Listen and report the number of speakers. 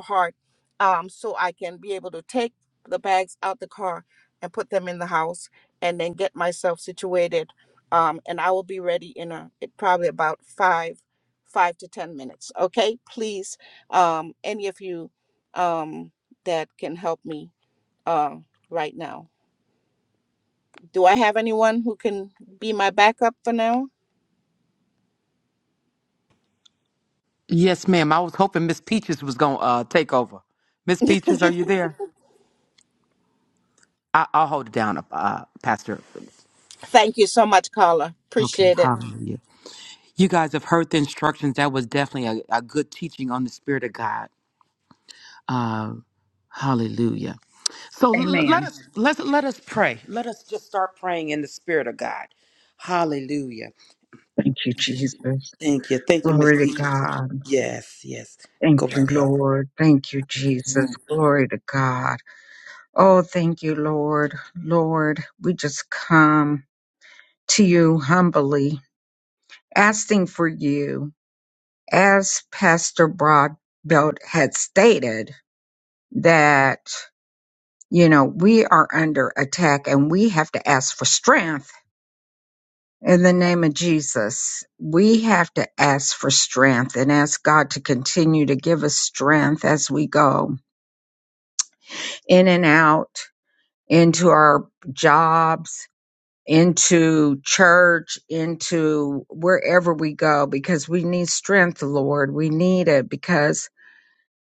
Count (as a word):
three